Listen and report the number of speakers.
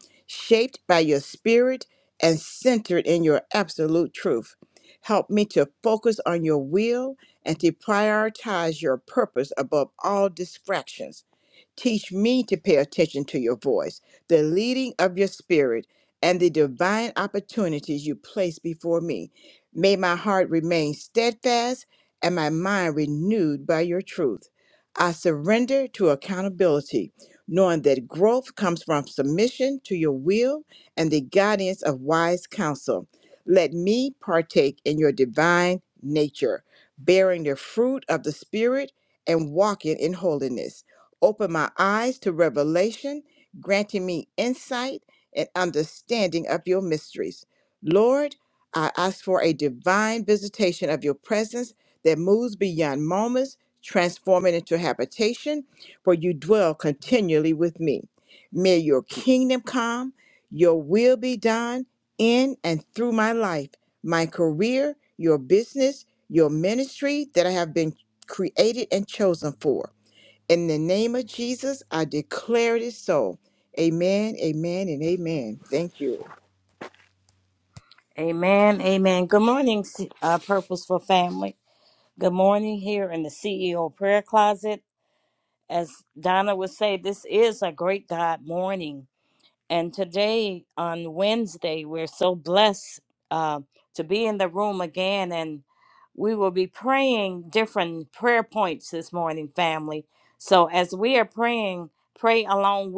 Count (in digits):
2